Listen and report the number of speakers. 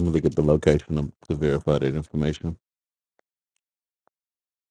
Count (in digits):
1